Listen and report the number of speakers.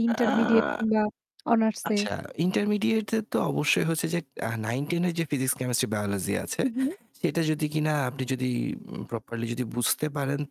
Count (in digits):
2